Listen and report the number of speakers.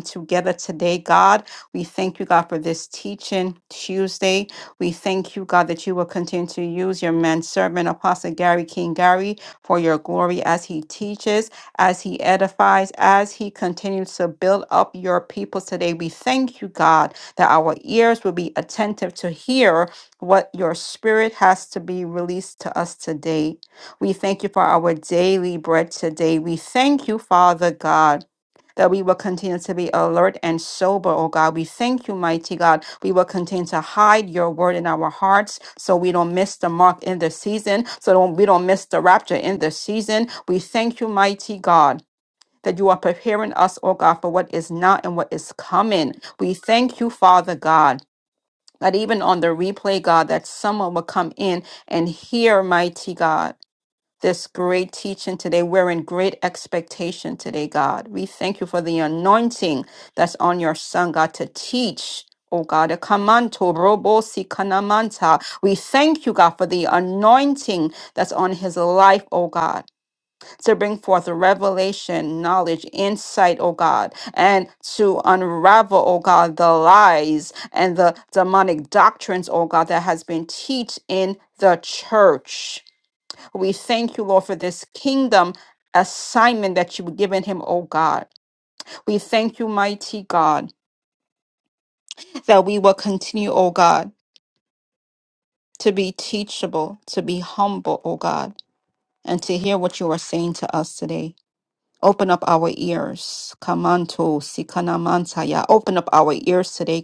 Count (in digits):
1